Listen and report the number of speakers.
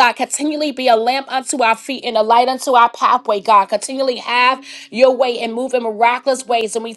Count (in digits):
1